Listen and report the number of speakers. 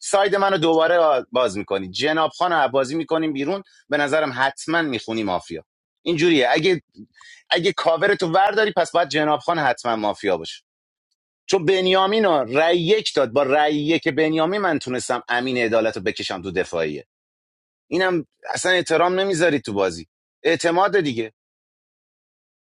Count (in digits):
1